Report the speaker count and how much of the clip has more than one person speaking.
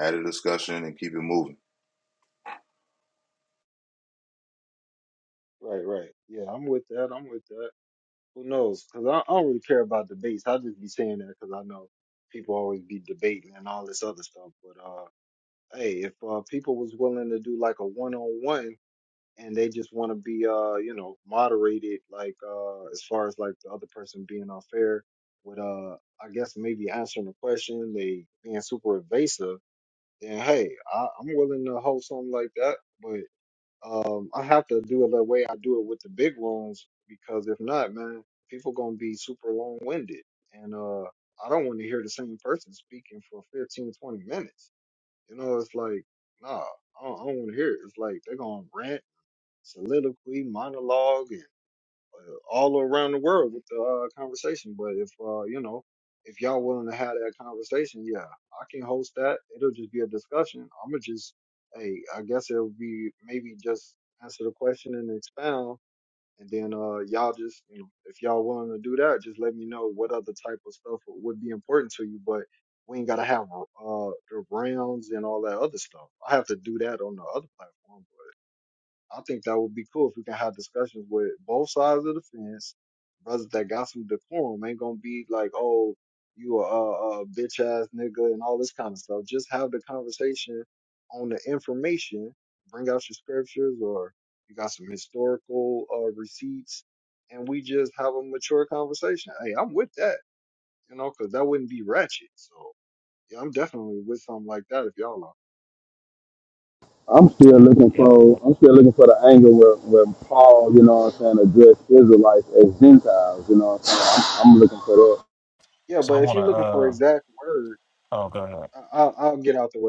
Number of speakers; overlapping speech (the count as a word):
four, about 1%